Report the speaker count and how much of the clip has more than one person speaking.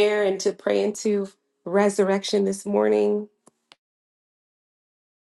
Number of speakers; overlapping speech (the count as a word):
one, no overlap